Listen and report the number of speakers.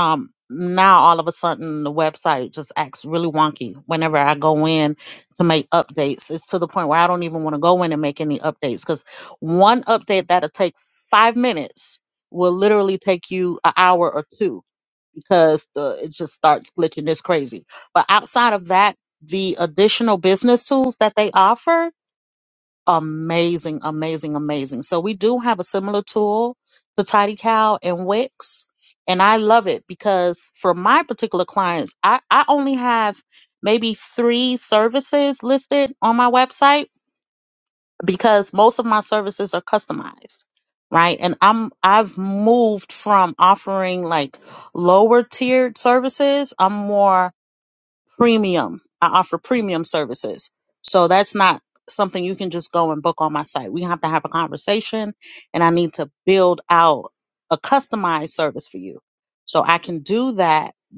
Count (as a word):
one